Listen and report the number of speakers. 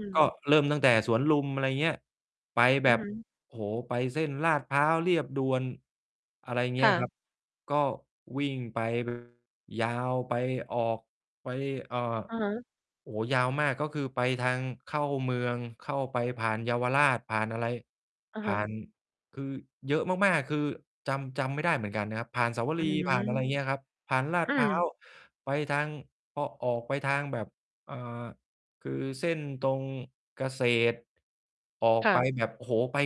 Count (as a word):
two